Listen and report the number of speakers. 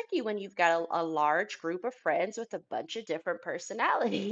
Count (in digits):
1